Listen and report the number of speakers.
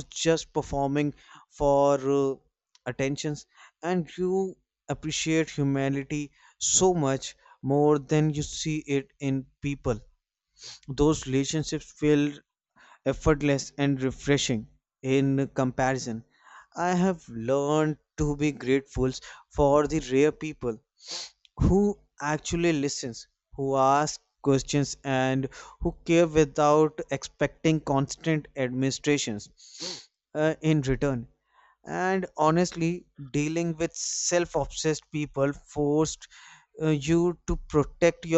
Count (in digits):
1